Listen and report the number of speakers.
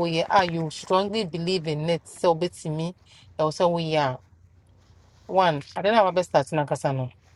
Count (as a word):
one